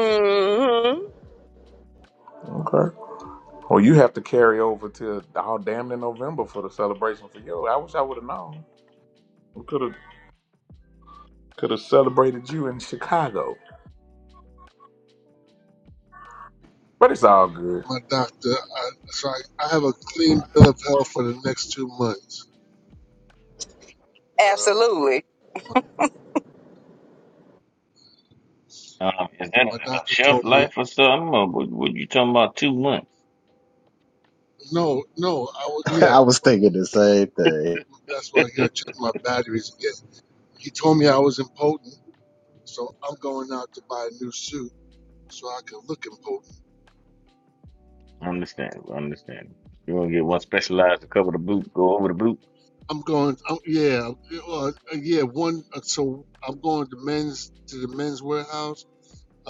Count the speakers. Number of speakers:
5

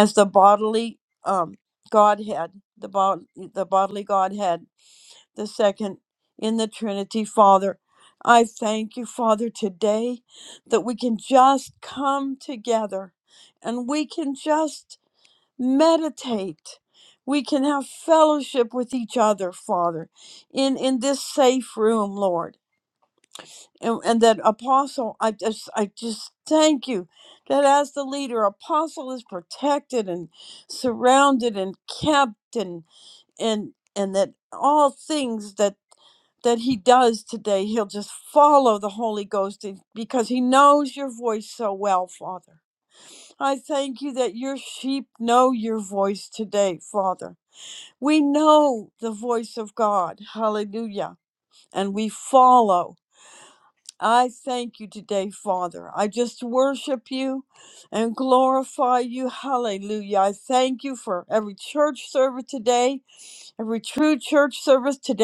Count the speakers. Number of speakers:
1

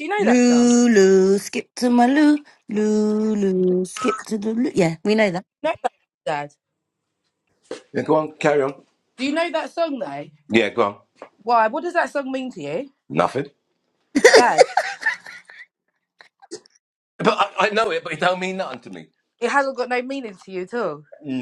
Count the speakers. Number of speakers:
3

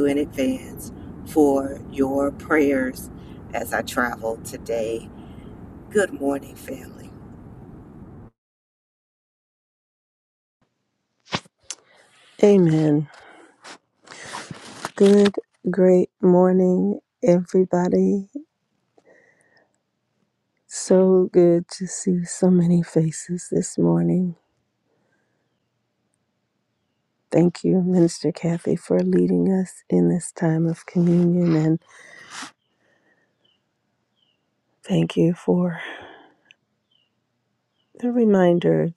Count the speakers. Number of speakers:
2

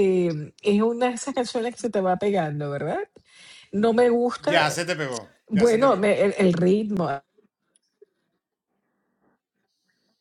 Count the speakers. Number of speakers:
1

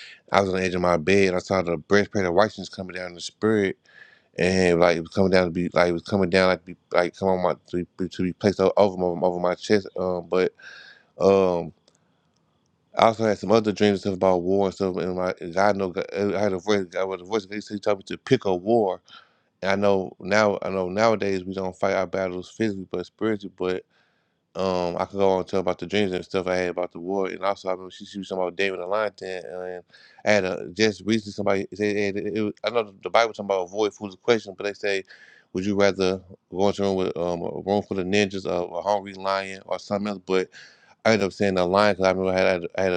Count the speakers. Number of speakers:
1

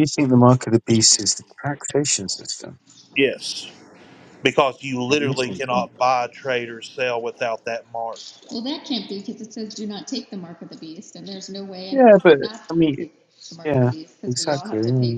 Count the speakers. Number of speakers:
3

